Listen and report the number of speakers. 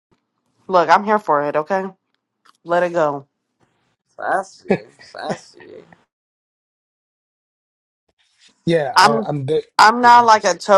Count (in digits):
3